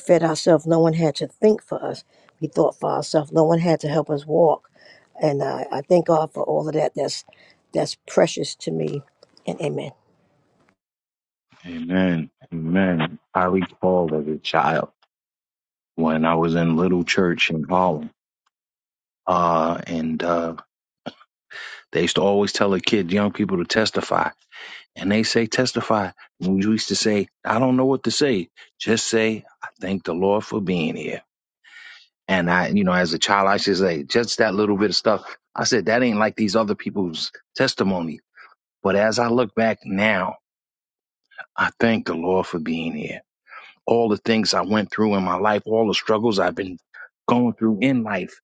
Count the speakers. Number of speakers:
2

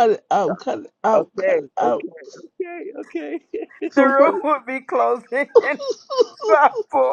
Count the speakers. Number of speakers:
3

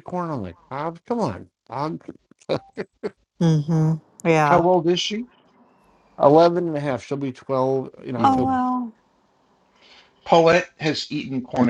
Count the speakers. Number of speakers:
3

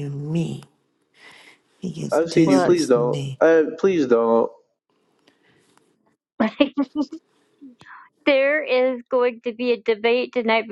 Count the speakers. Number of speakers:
3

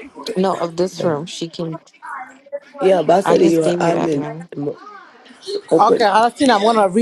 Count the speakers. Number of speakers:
3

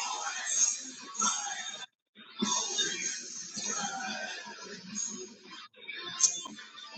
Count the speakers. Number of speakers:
0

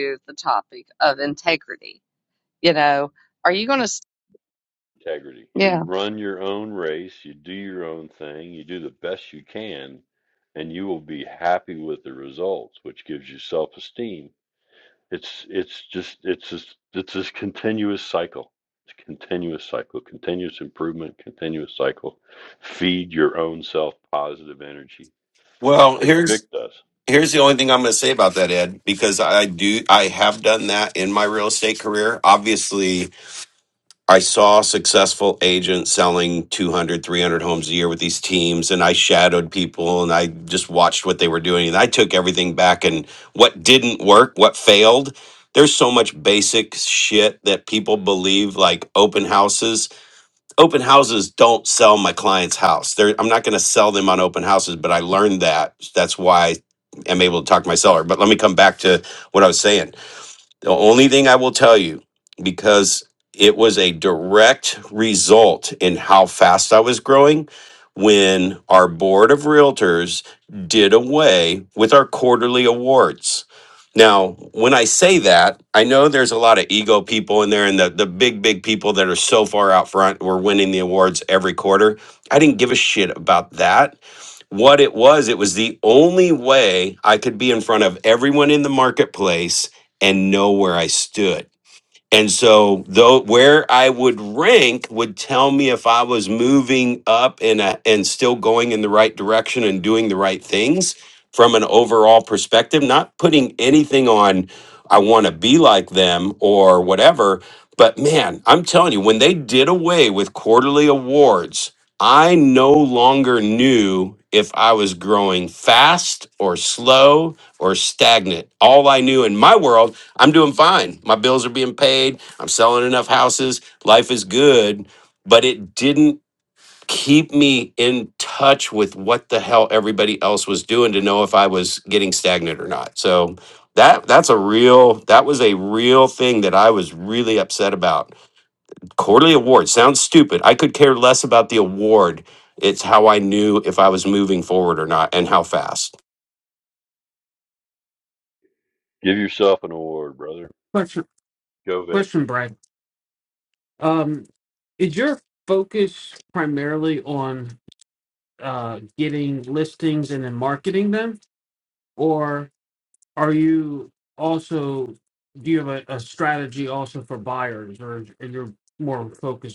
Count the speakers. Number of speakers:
4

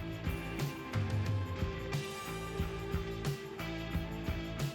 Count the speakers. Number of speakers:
0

